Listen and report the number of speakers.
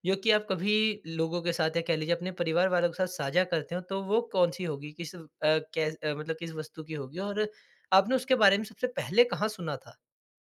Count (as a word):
one